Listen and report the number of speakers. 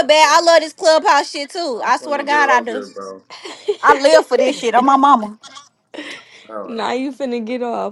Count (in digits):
3